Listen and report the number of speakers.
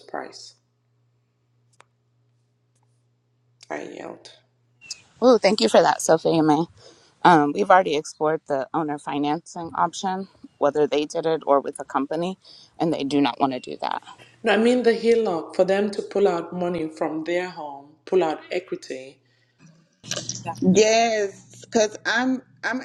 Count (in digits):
3